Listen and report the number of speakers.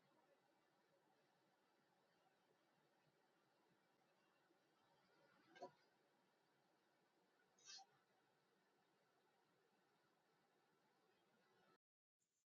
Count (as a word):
zero